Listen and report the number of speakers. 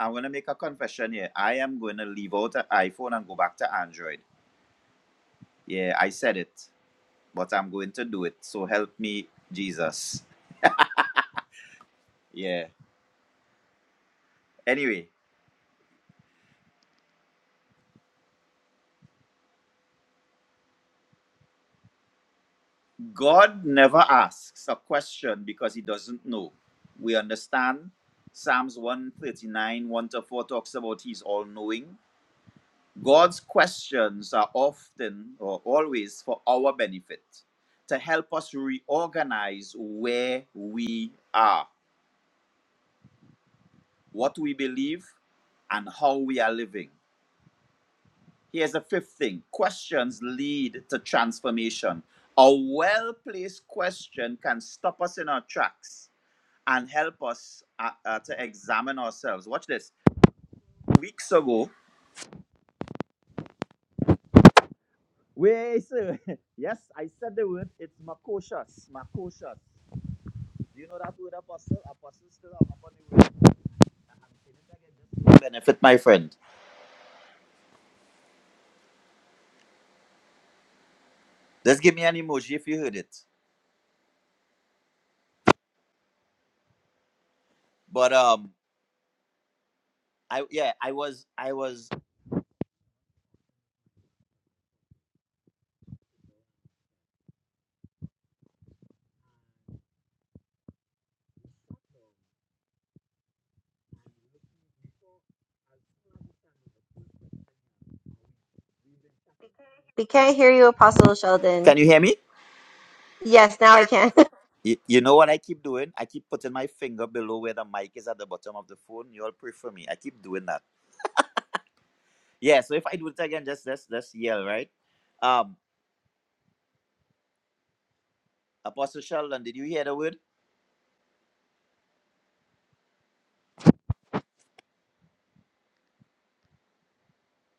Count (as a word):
two